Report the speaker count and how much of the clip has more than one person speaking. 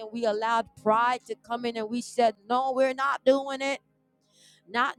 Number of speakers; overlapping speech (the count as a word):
one, no overlap